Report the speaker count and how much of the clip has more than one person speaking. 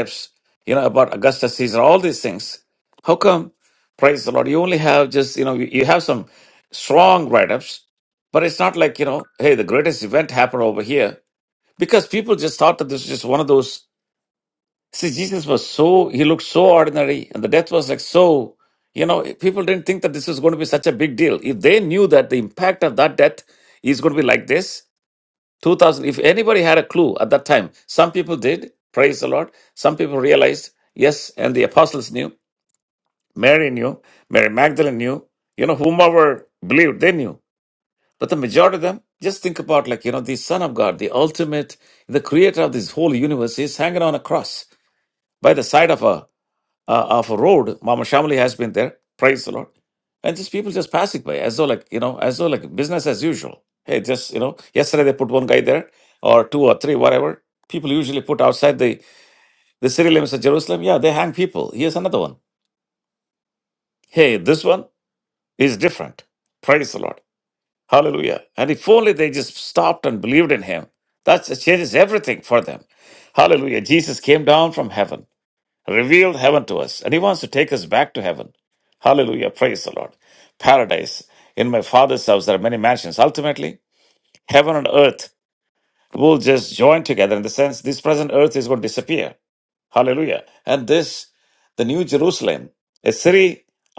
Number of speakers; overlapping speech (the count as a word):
one, no overlap